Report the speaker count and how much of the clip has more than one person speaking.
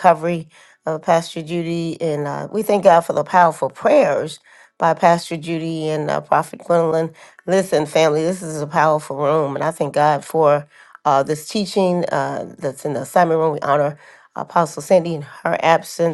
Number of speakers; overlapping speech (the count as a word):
one, no overlap